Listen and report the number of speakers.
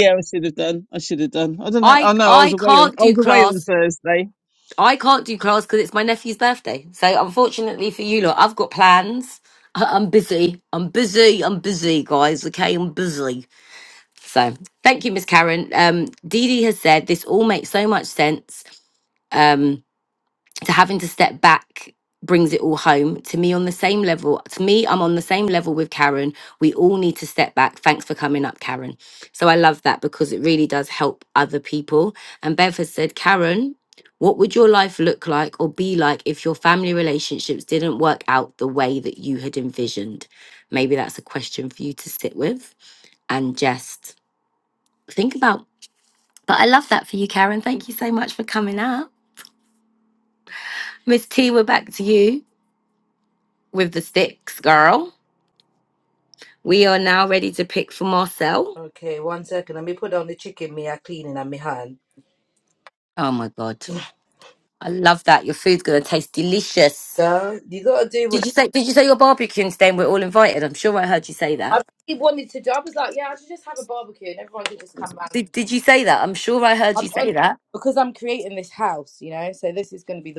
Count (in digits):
3